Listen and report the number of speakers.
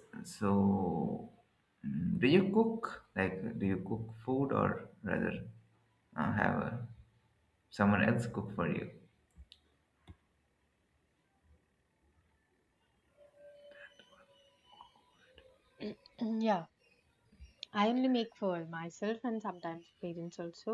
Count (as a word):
two